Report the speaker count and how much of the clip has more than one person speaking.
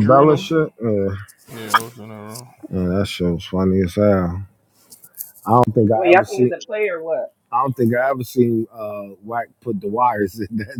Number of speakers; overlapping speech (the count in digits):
3, about 11%